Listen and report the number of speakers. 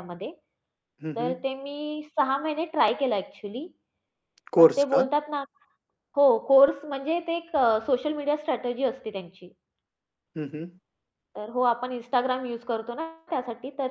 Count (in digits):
2